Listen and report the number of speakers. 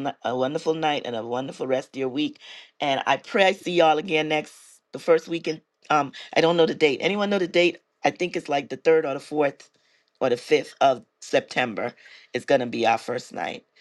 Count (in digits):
1